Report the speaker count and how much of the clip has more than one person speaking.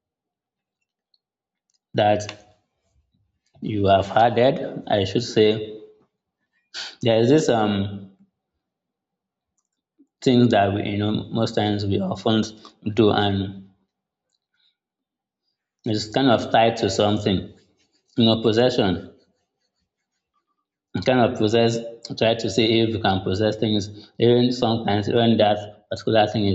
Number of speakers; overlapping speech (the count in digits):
1, no overlap